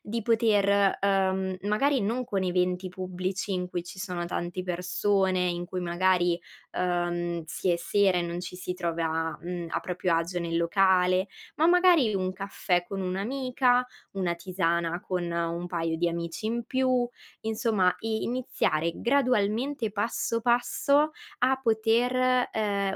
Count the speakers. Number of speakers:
1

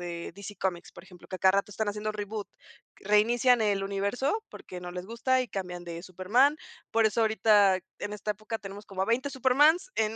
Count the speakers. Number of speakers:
1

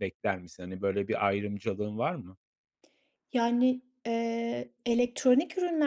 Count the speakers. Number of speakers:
2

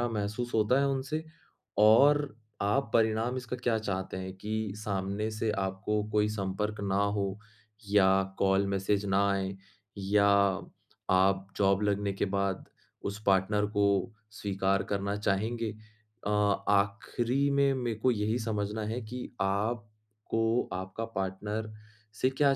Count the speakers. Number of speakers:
1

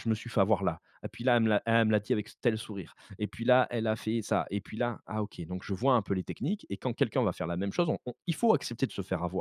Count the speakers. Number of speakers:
1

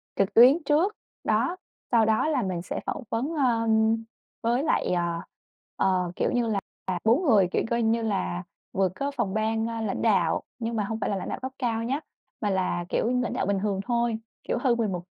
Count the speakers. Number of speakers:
1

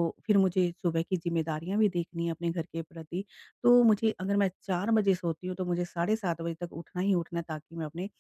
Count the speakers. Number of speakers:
1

